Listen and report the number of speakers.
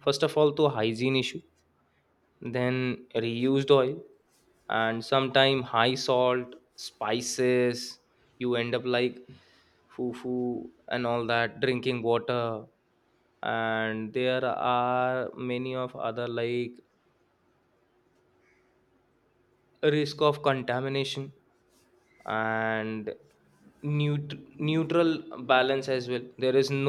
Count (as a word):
one